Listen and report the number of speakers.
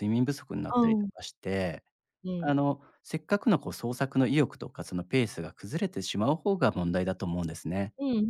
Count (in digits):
2